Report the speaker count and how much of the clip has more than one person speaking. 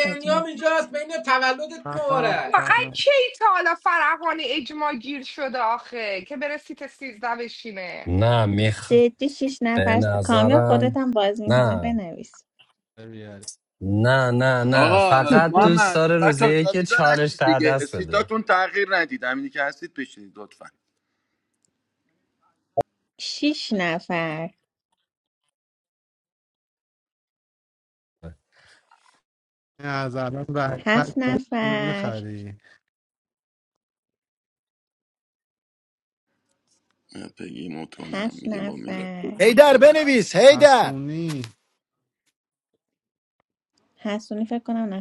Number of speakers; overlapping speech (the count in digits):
7, about 22%